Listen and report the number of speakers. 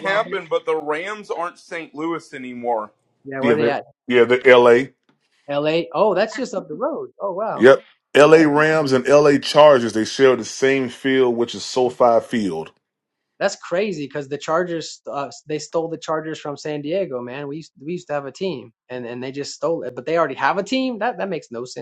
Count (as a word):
three